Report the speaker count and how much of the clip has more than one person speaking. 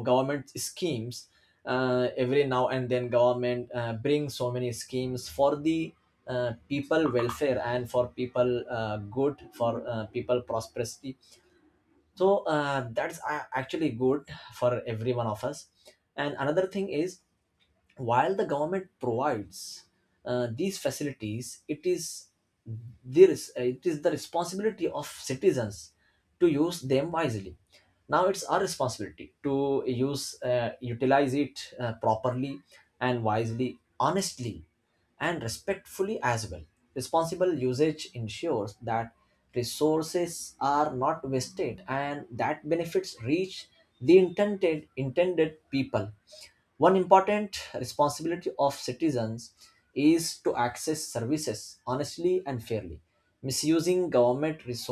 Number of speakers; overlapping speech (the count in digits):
1, no overlap